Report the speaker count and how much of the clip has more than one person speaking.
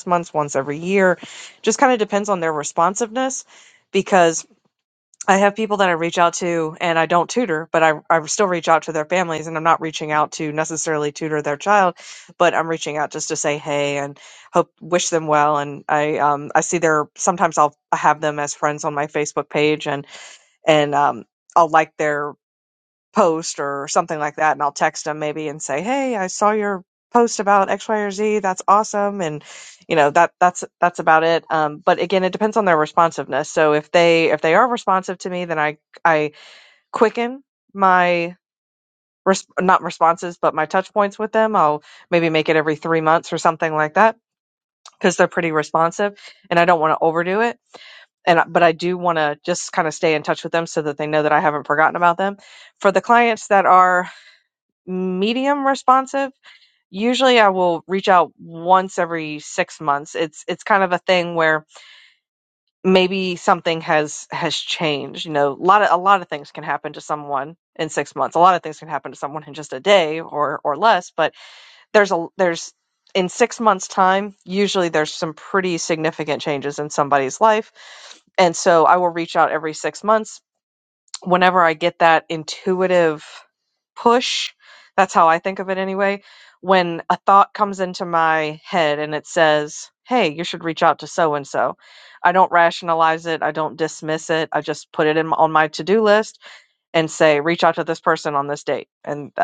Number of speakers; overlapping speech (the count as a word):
one, no overlap